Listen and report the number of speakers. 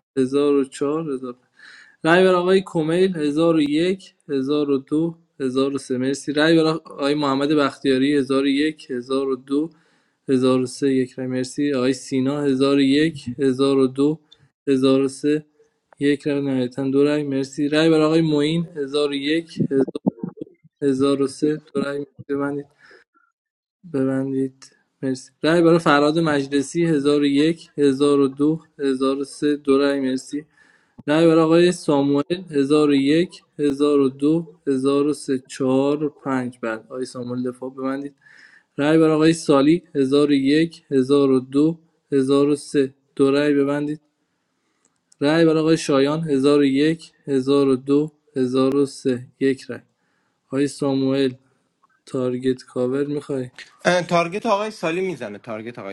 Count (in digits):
2